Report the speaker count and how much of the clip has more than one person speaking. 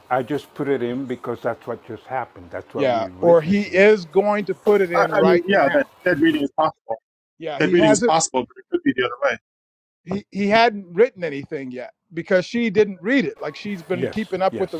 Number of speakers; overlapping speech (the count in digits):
3, about 23%